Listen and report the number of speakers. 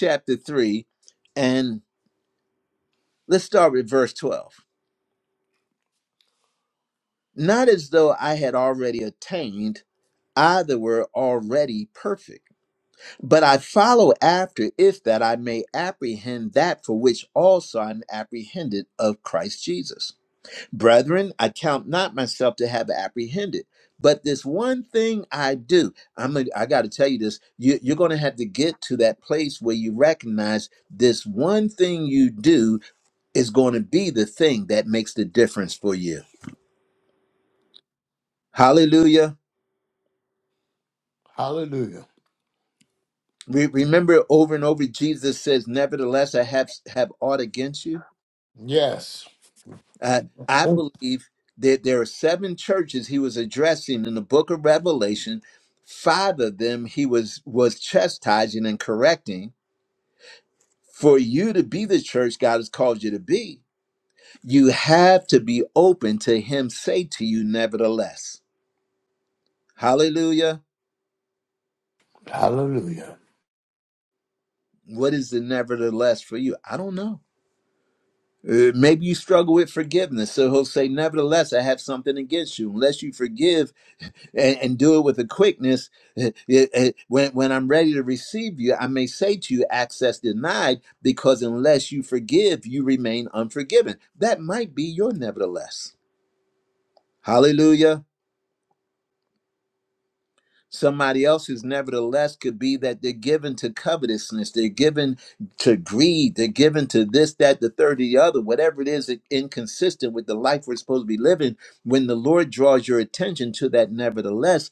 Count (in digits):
2